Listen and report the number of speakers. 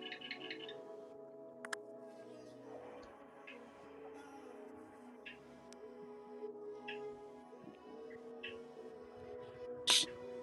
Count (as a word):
zero